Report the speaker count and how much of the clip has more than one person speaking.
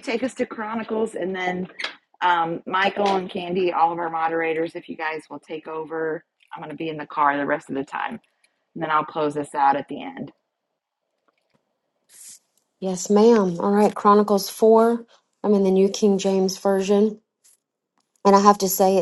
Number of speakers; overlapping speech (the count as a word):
two, no overlap